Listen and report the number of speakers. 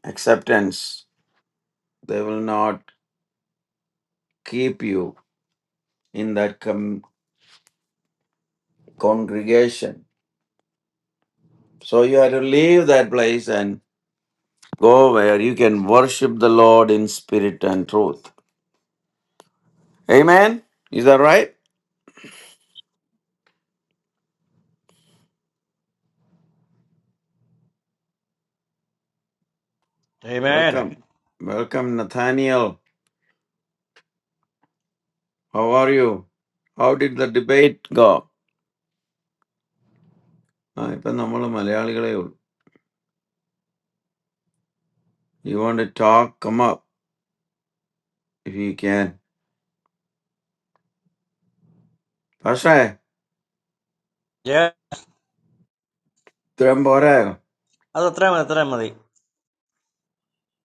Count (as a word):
two